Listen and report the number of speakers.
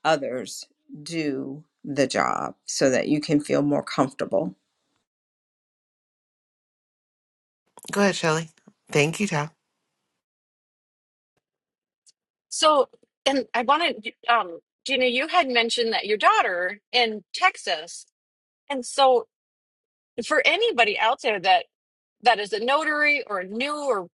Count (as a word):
three